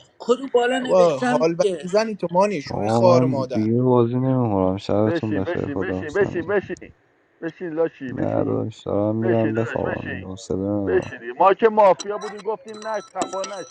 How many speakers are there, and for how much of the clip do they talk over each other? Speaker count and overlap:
4, about 39%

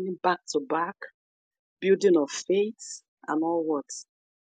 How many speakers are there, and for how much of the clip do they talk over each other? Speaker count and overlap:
1, no overlap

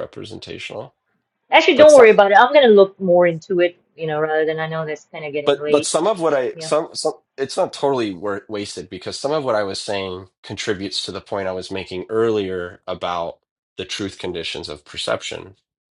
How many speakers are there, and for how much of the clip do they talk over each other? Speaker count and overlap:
2, about 7%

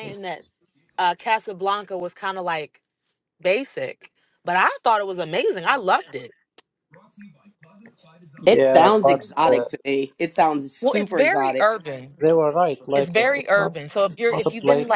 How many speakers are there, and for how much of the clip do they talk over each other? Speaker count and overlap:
3, about 24%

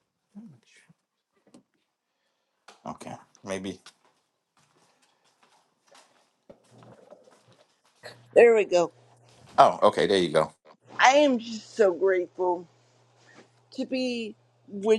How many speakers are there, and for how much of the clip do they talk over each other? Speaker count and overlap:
2, no overlap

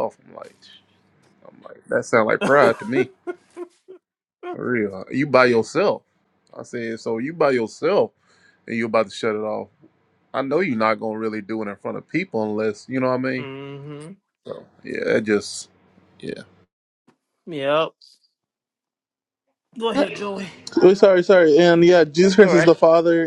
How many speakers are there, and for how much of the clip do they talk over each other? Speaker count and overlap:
3, about 2%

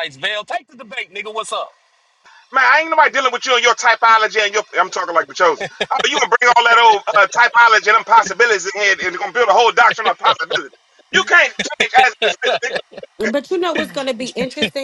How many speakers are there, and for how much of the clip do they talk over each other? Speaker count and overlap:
3, no overlap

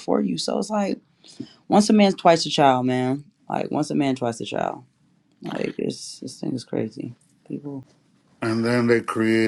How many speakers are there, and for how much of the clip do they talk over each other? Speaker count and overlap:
2, no overlap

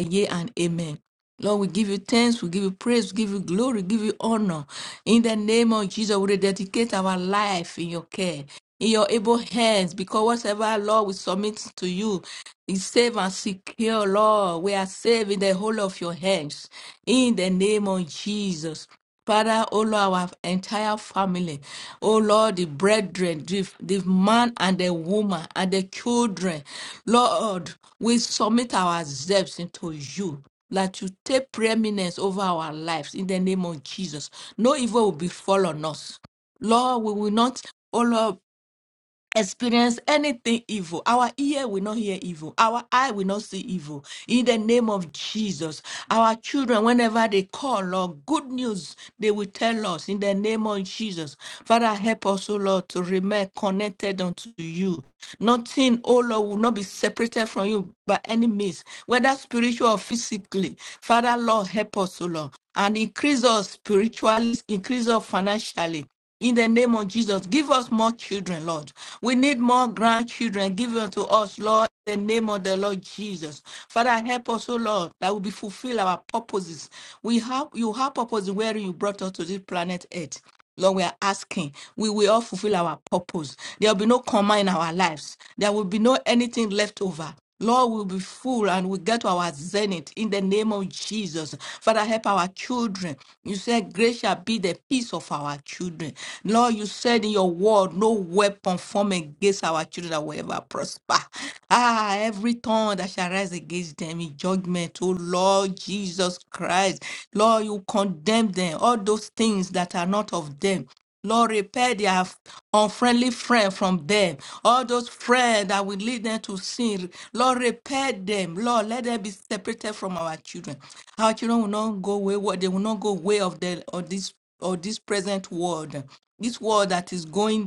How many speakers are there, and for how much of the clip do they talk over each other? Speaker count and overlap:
1, no overlap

